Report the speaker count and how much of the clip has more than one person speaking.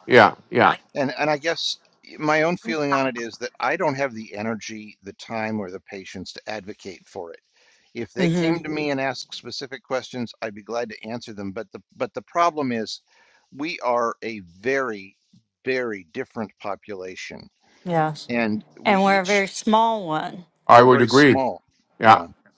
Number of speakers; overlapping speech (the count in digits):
3, about 8%